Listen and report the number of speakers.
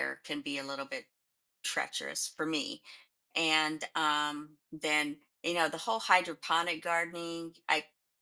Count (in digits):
1